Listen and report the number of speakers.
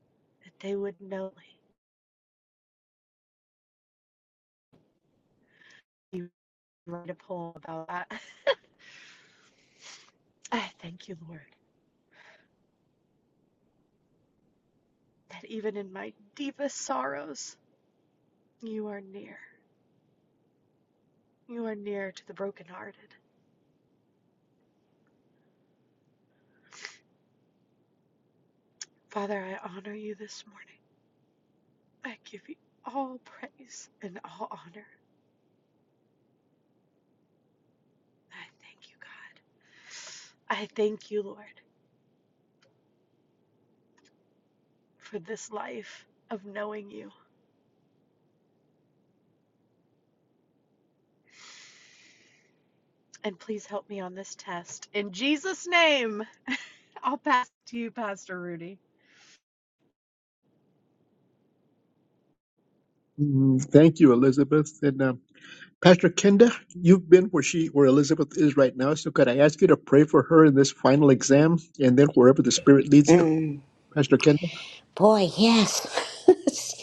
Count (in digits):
3